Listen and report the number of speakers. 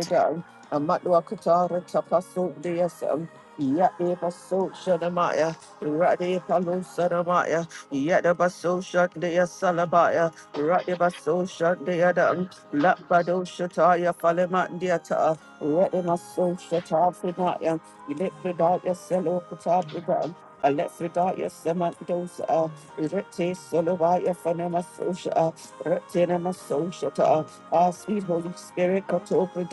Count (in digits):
1